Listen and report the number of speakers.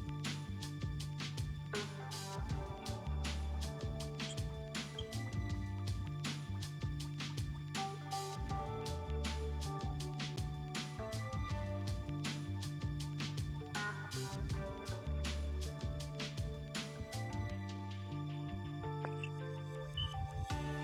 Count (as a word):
zero